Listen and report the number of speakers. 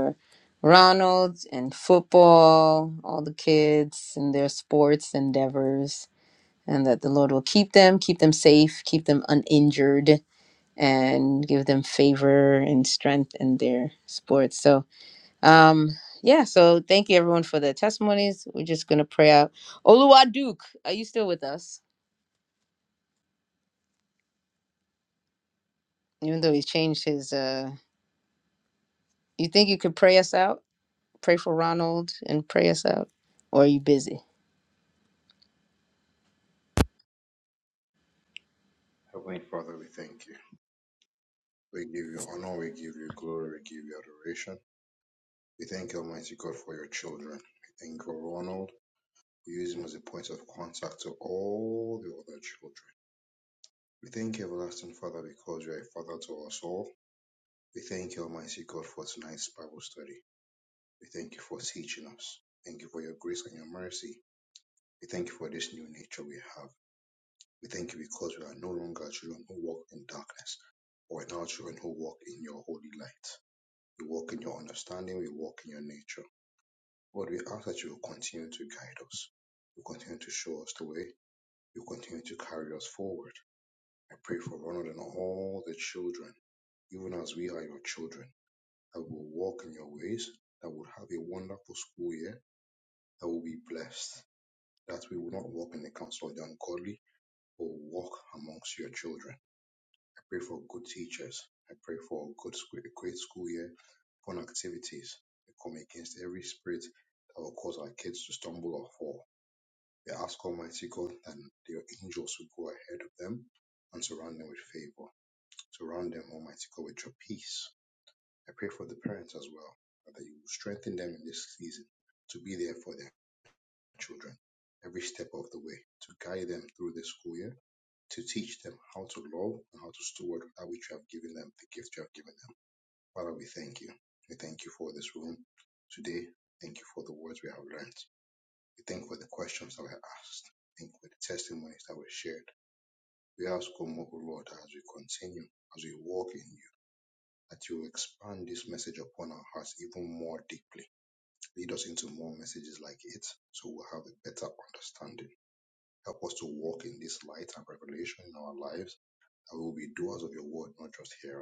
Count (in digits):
2